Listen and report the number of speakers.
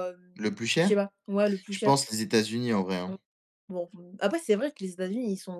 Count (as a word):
two